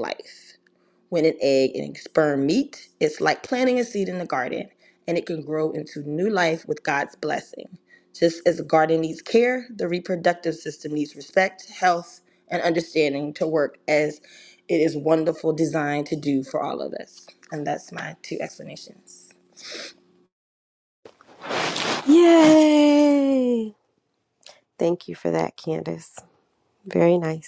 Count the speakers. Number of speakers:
two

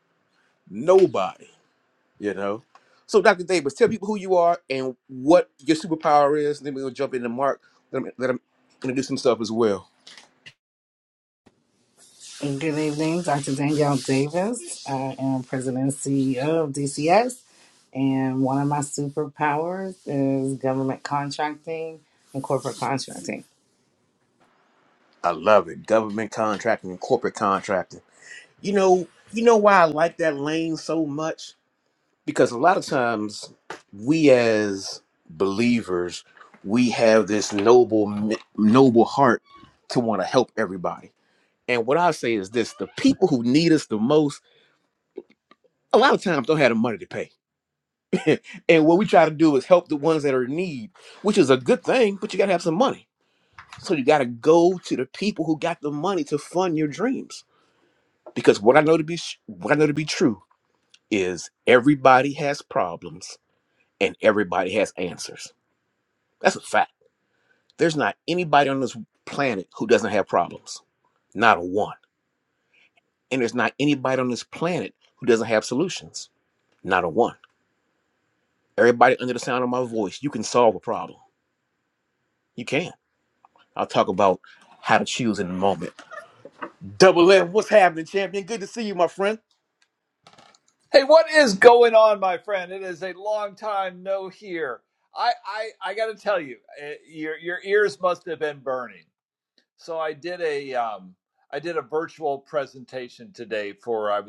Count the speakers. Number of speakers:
three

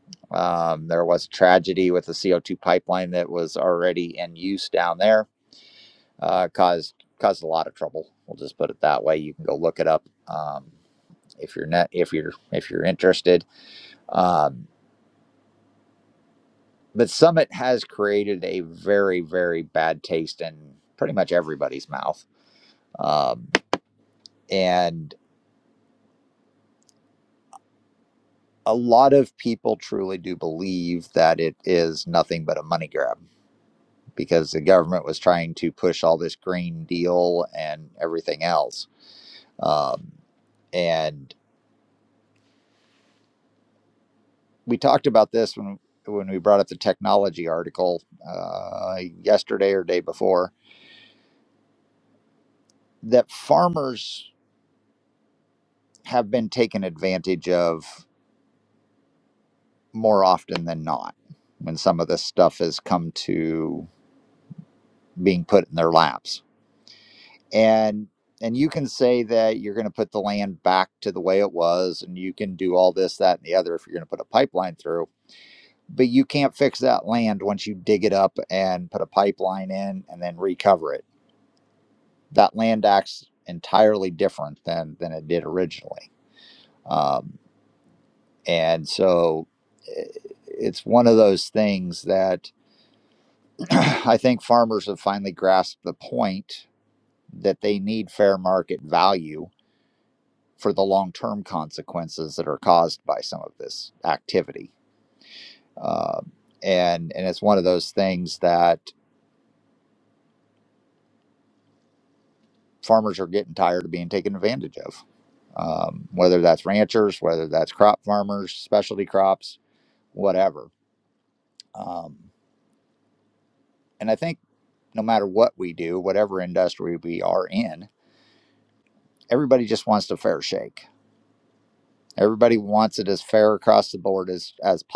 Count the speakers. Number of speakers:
one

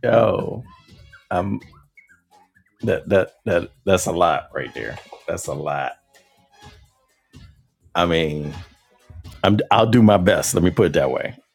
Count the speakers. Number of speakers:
one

